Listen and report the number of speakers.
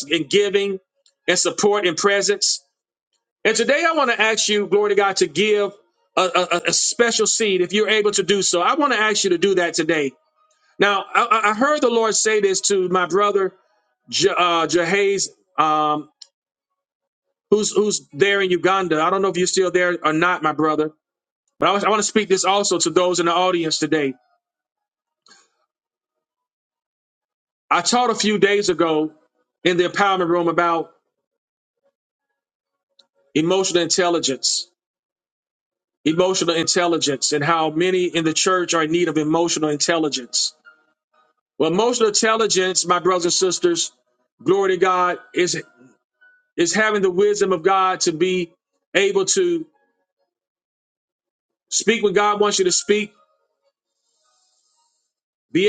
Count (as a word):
one